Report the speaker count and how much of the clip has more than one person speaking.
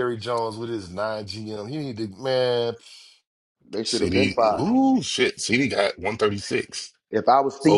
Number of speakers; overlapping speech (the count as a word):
three, about 12%